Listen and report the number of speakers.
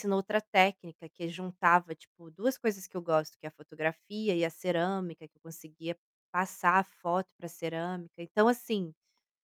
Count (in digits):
1